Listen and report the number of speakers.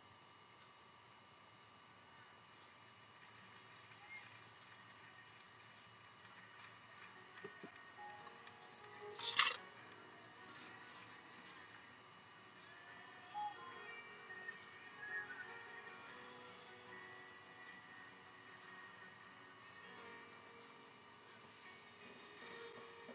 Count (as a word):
zero